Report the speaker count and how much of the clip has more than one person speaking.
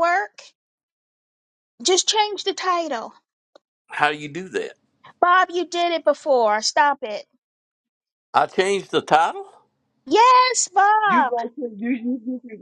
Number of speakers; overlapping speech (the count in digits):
3, about 3%